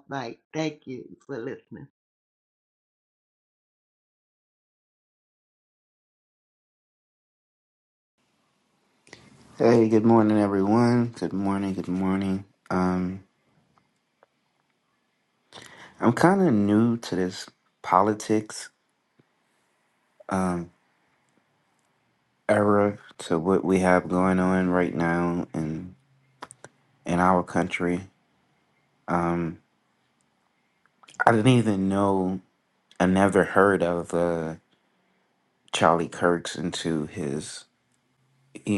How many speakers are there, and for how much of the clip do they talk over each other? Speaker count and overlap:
2, no overlap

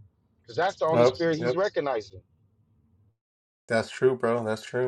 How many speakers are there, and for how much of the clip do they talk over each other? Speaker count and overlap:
2, about 14%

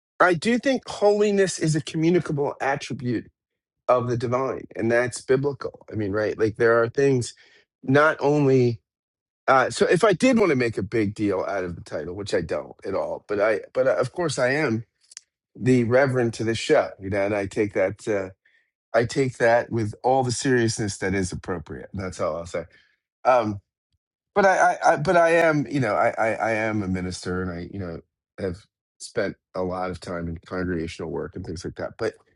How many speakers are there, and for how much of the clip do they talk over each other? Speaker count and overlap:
1, no overlap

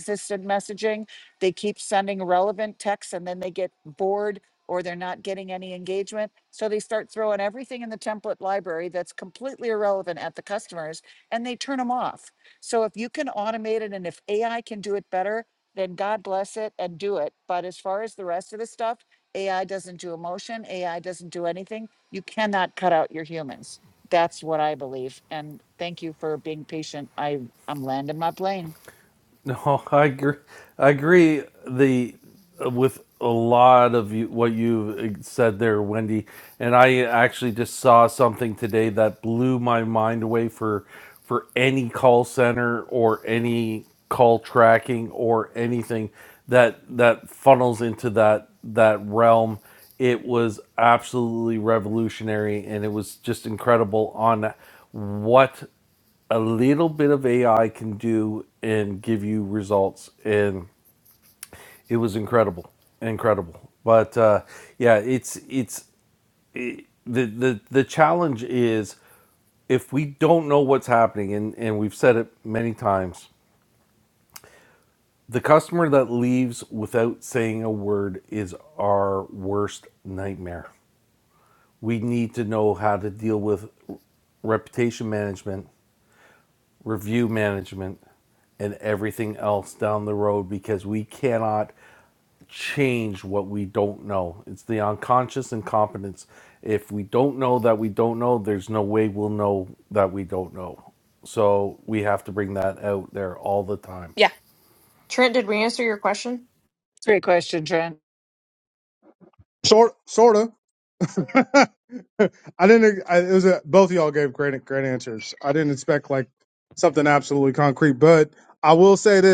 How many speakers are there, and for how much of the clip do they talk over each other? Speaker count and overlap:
4, no overlap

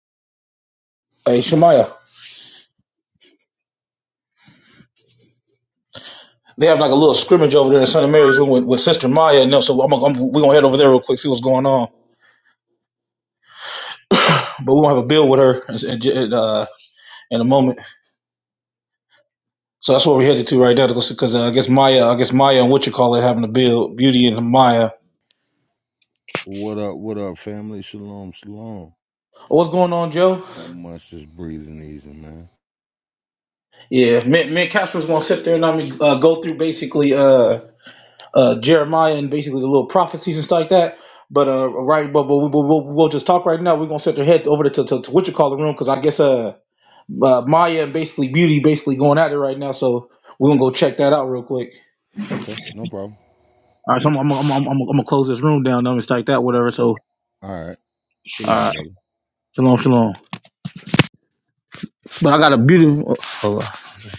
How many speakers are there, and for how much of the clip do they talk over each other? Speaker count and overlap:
2, about 1%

